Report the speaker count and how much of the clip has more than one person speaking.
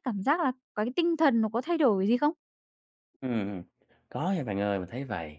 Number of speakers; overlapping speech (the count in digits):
2, no overlap